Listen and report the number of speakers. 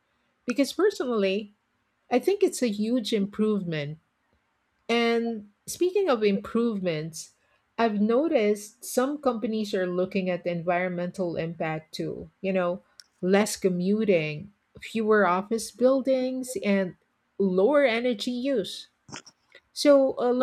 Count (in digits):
1